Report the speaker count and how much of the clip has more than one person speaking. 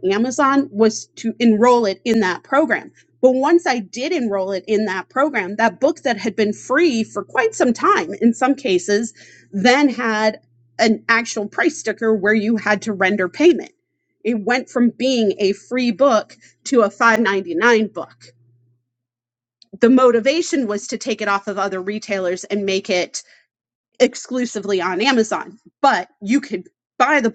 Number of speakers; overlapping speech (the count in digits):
1, no overlap